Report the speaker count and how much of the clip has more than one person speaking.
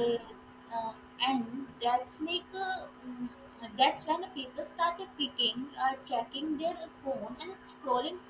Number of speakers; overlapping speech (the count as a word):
one, no overlap